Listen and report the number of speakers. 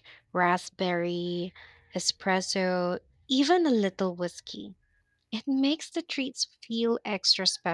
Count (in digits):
1